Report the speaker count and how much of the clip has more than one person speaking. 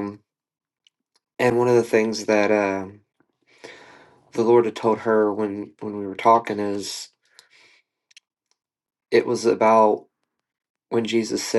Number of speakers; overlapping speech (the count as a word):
one, no overlap